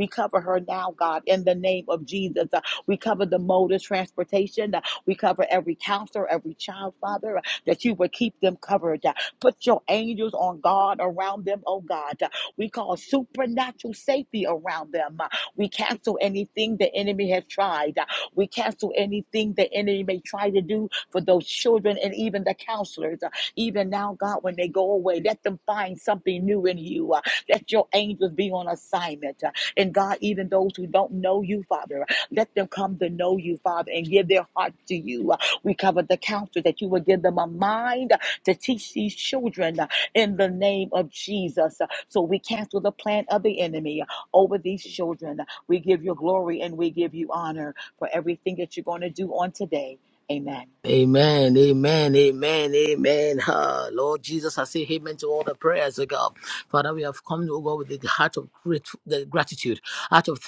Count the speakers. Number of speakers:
2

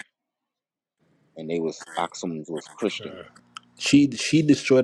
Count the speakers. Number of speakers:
2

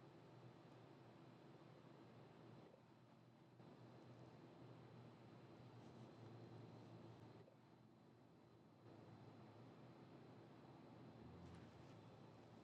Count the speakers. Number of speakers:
0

